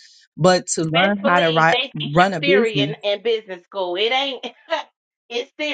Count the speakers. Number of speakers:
2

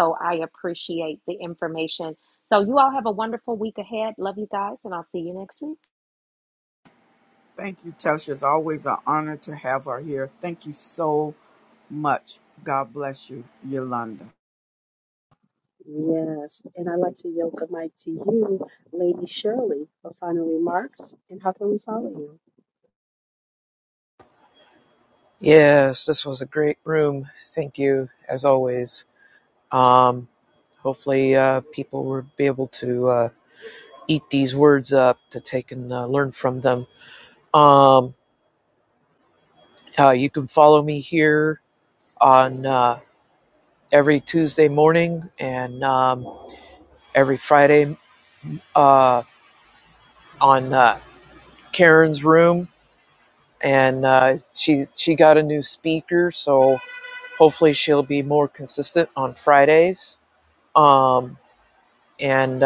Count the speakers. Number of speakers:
4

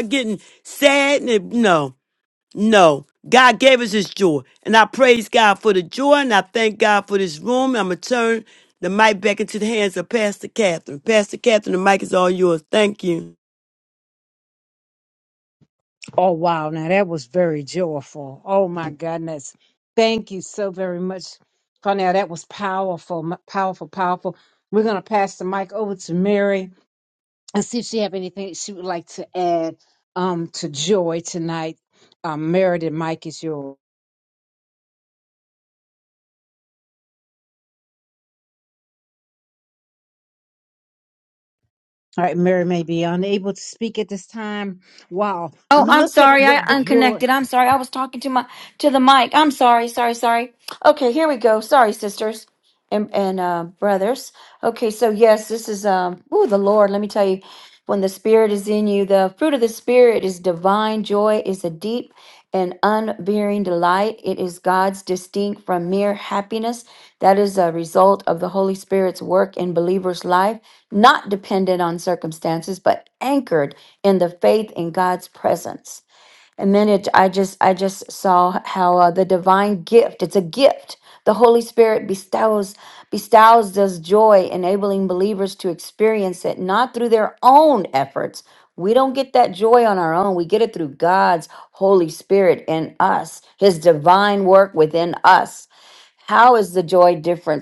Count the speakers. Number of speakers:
3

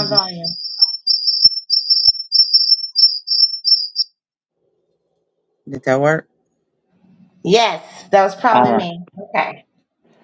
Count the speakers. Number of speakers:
2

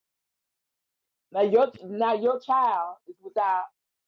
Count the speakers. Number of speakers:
1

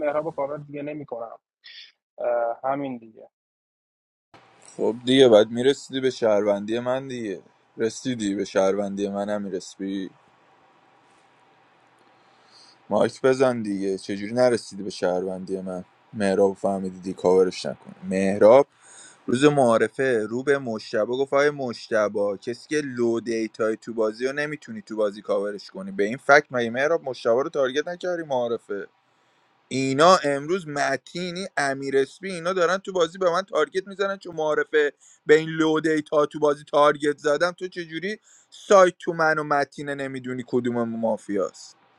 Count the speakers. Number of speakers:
2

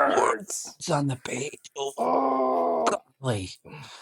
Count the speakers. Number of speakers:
2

